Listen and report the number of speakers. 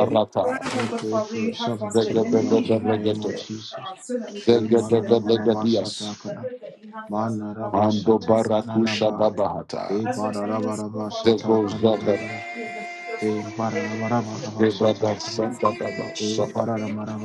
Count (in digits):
3